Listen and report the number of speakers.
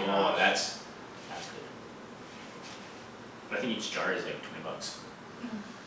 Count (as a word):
one